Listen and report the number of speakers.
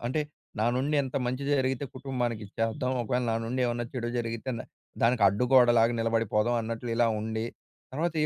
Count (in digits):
1